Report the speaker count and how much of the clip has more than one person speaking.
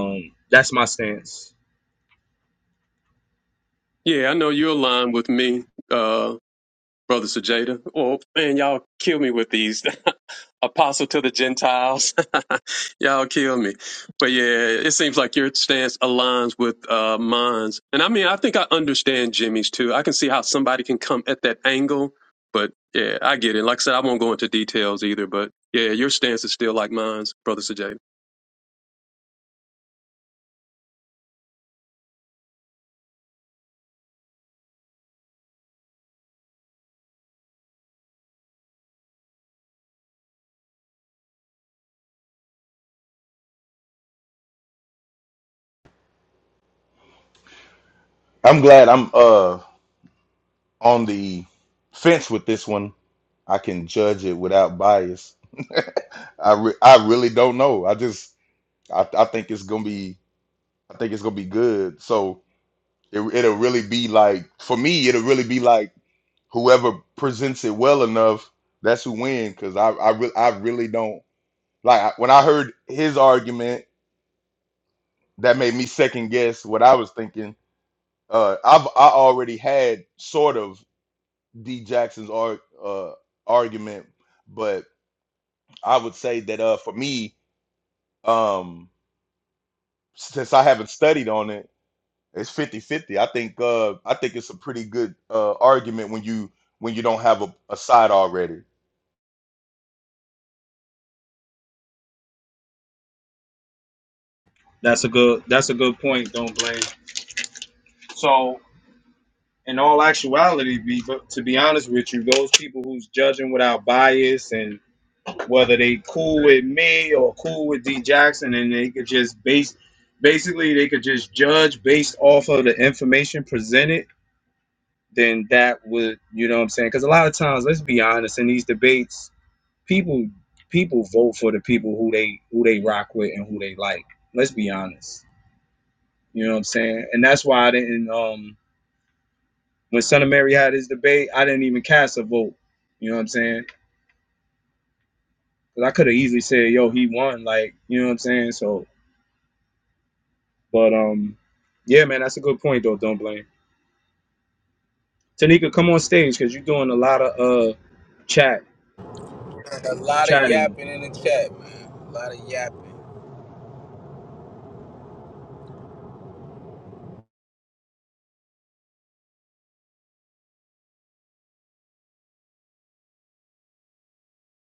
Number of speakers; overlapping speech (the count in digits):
4, under 1%